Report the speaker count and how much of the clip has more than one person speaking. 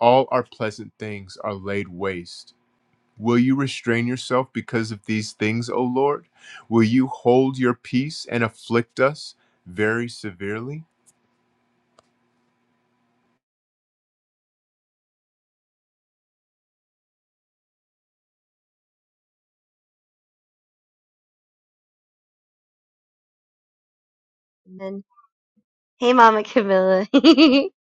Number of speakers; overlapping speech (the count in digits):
2, no overlap